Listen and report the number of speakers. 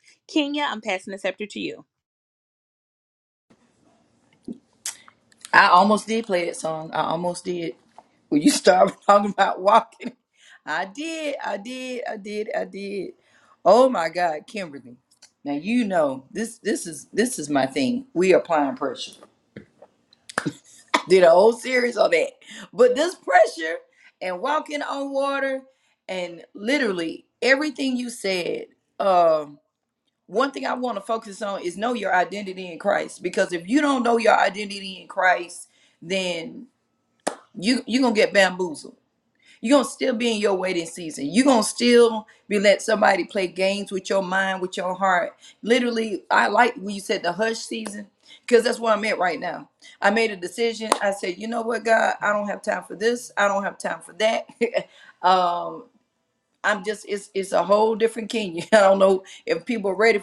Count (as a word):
two